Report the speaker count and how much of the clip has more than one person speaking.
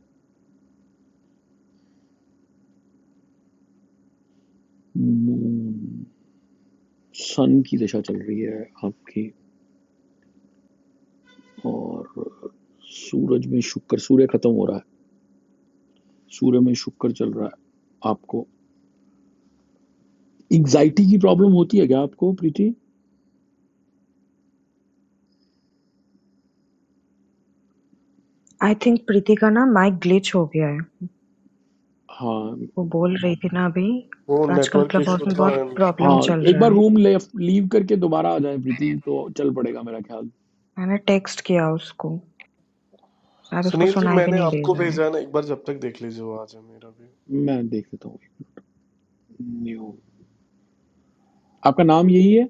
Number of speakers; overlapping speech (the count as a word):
three, about 7%